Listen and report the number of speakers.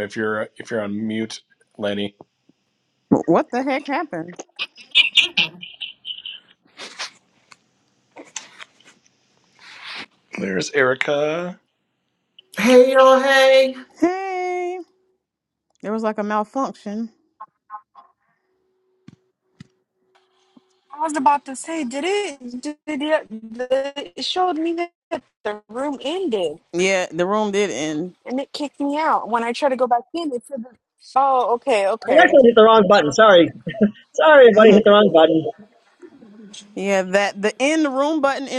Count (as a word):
five